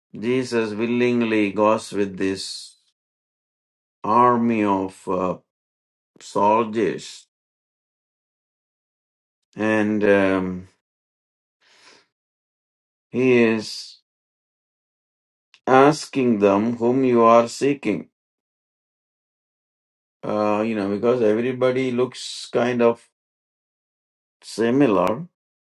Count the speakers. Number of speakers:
1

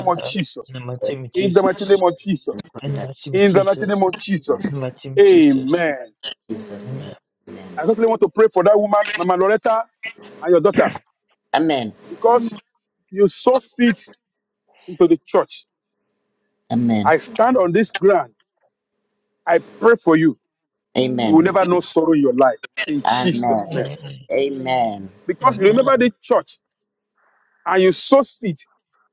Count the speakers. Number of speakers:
3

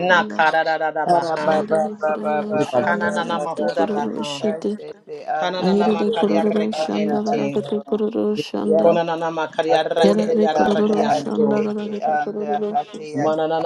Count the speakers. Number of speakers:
3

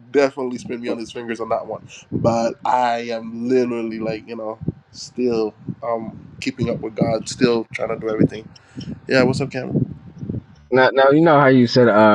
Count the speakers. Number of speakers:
2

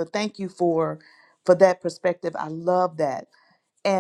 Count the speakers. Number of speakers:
1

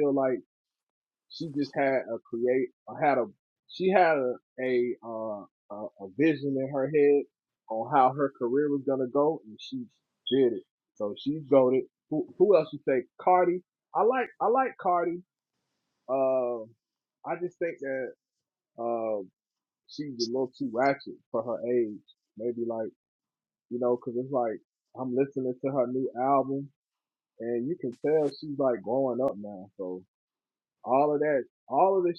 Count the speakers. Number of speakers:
1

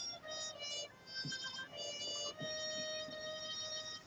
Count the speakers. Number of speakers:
0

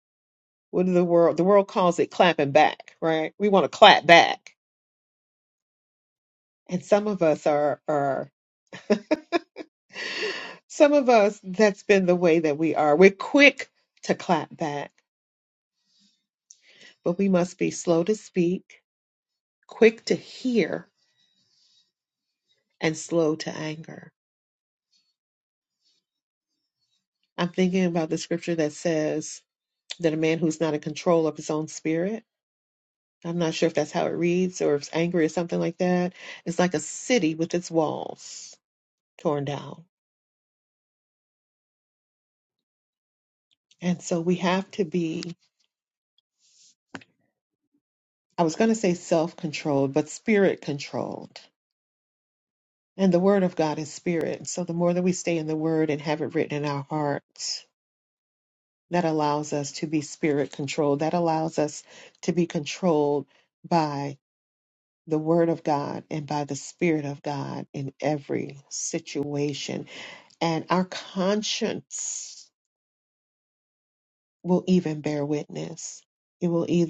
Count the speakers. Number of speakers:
1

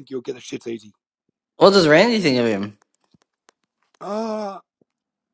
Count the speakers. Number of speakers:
2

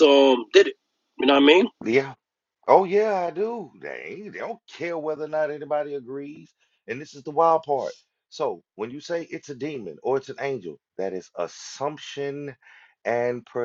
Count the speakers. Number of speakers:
2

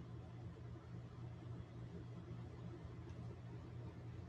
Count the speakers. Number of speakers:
0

